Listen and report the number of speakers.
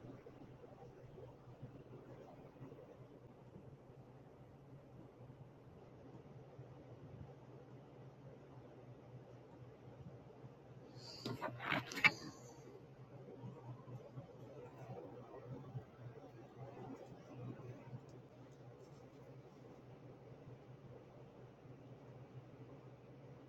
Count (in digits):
0